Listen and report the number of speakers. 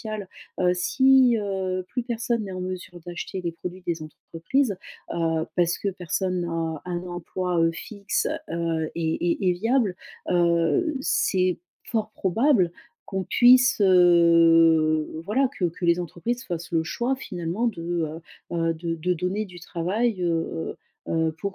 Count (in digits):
1